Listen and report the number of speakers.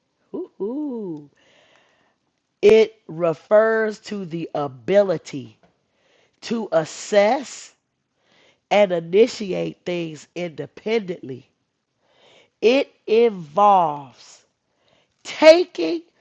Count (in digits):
1